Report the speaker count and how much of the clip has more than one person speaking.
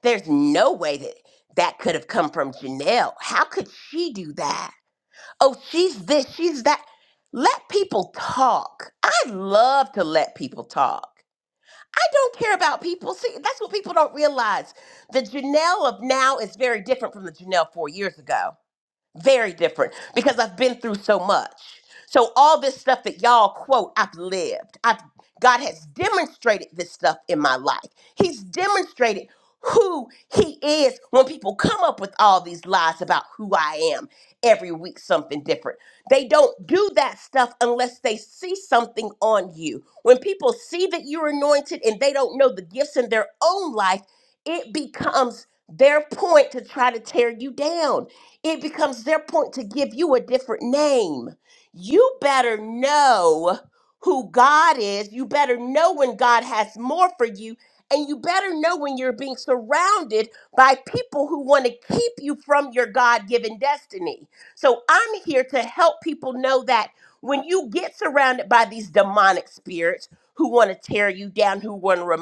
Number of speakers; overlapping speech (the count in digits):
1, no overlap